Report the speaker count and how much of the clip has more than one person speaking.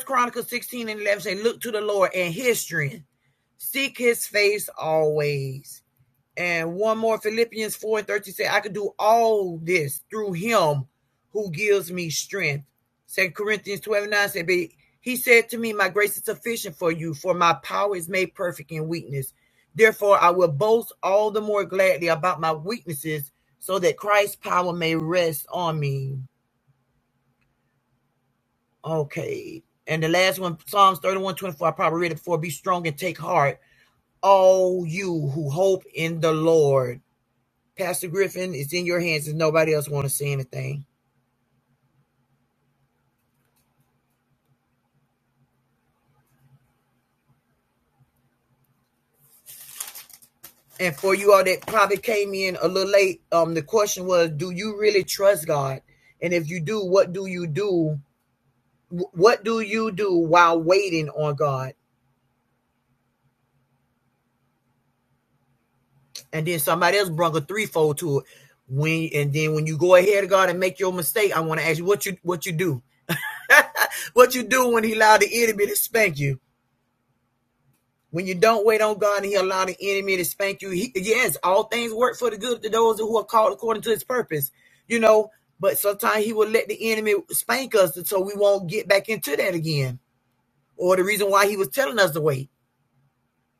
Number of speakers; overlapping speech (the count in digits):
1, no overlap